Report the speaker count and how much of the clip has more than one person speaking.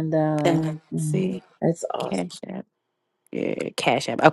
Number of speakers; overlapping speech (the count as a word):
two, about 12%